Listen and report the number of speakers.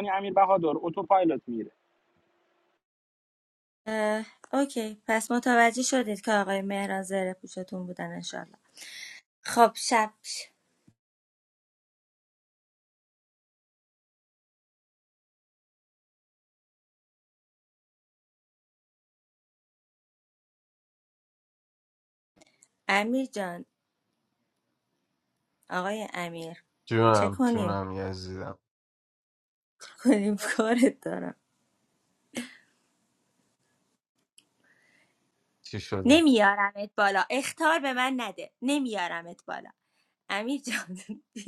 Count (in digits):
3